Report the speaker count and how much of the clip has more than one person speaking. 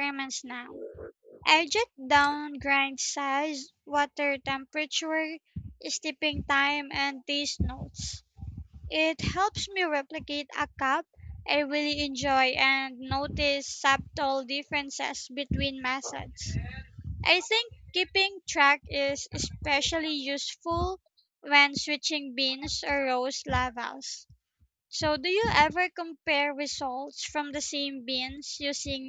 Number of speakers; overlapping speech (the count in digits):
1, no overlap